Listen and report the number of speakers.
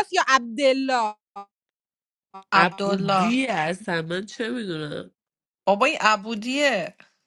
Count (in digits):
3